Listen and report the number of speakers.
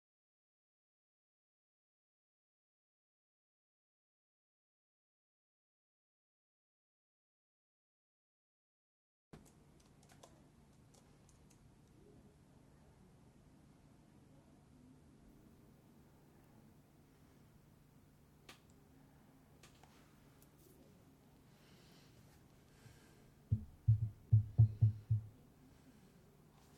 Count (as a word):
zero